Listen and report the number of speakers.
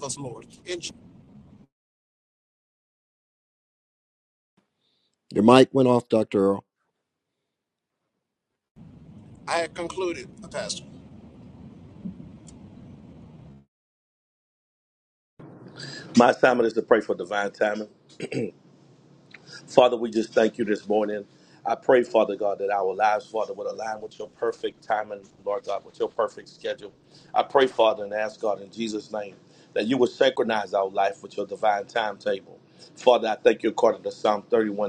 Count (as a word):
three